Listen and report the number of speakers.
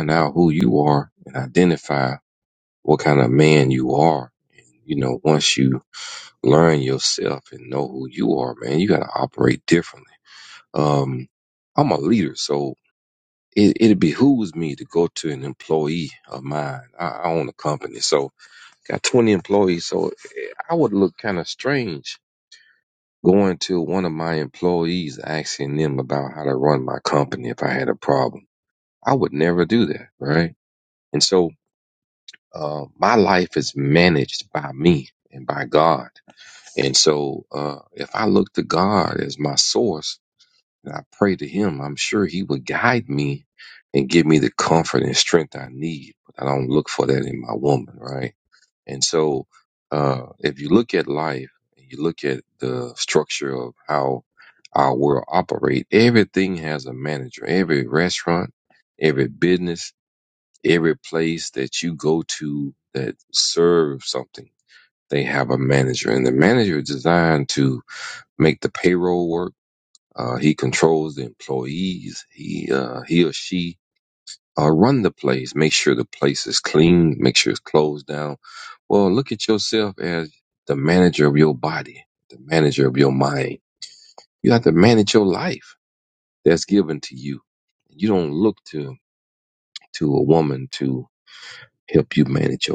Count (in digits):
1